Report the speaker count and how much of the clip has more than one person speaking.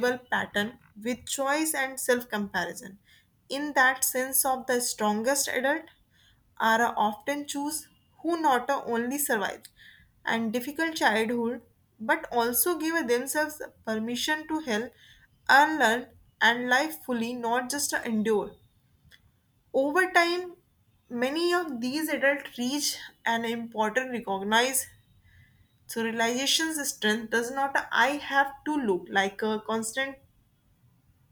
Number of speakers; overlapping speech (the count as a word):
one, no overlap